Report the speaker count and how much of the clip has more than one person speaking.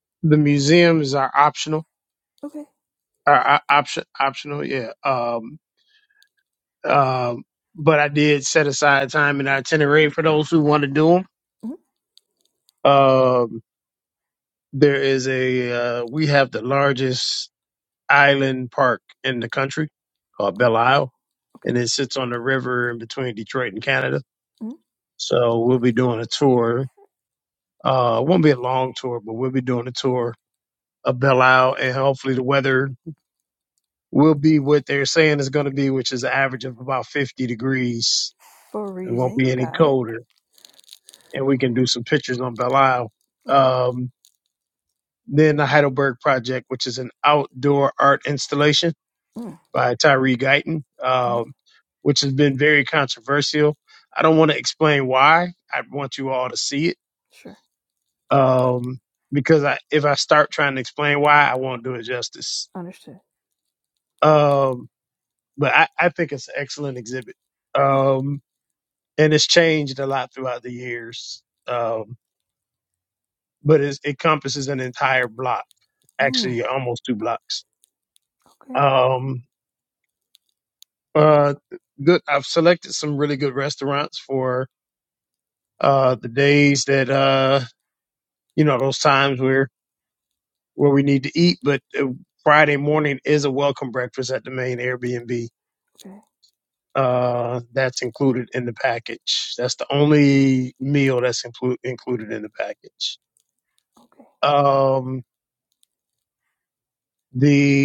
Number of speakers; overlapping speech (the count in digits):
2, about 3%